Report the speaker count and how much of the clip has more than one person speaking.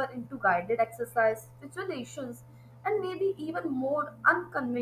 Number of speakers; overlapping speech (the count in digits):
1, no overlap